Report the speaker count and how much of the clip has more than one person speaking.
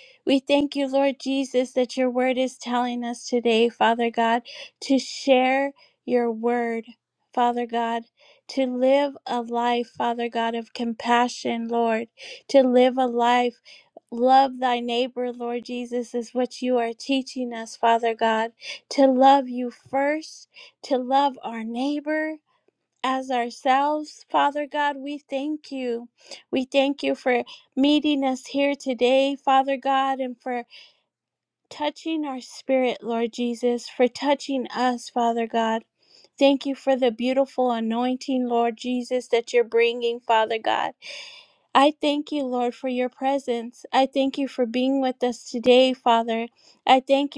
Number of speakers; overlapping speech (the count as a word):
one, no overlap